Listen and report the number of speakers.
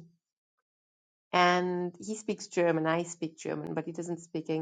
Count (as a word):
one